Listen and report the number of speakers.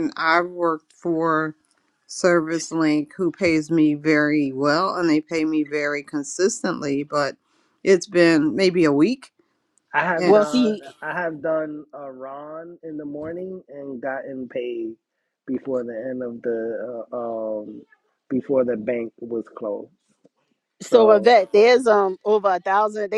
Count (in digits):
3